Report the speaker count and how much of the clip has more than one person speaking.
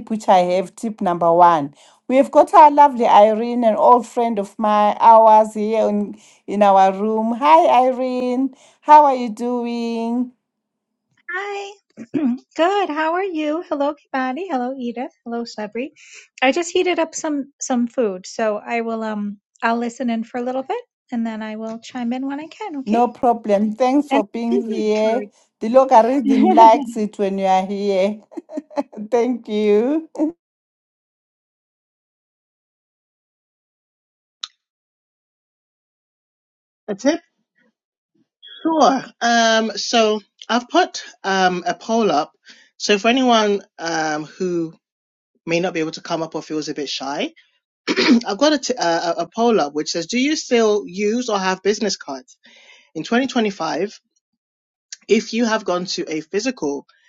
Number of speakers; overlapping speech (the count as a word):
three, about 2%